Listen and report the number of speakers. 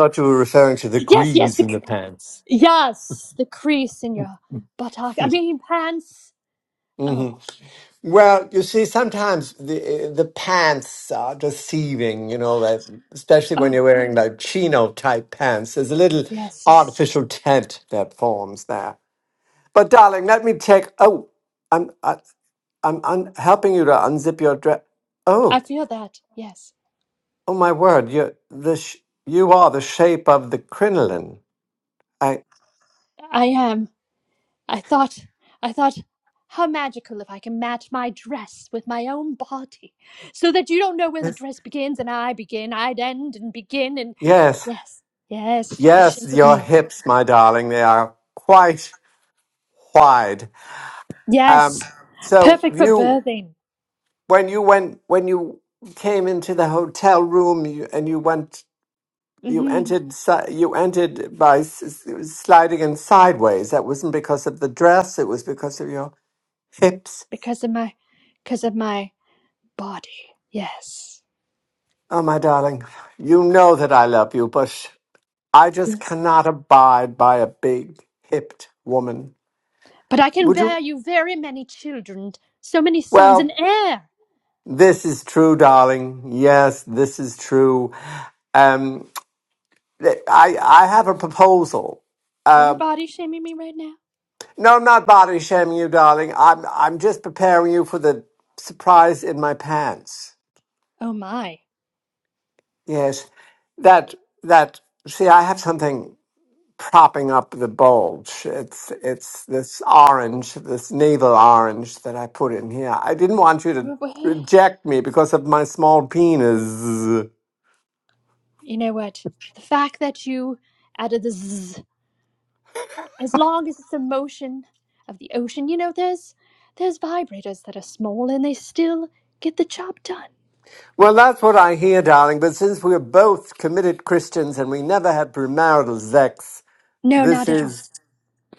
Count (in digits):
2